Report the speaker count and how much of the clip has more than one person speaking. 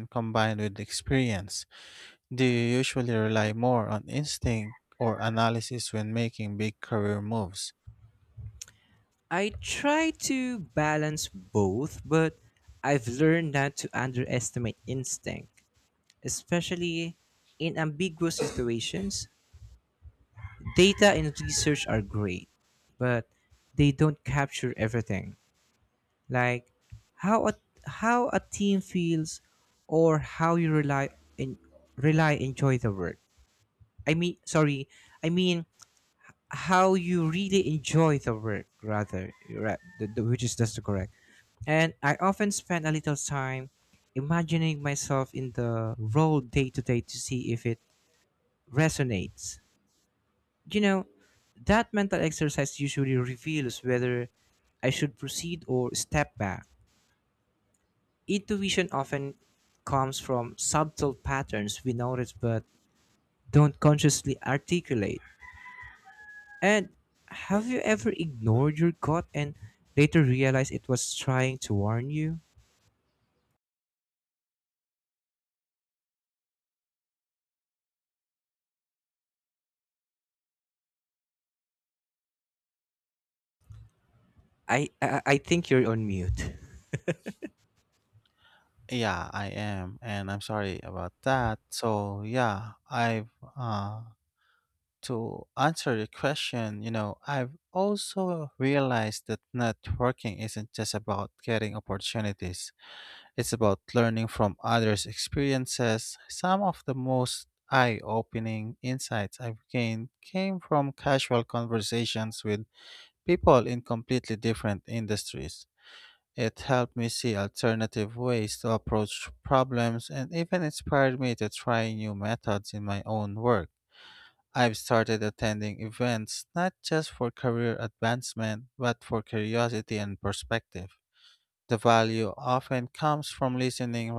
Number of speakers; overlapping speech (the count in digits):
2, no overlap